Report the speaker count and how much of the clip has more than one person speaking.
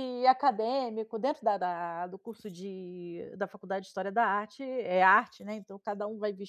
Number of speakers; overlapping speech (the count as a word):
one, no overlap